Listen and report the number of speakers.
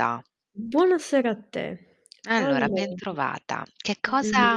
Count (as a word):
two